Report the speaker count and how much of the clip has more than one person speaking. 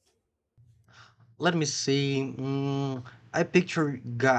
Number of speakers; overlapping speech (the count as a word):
one, no overlap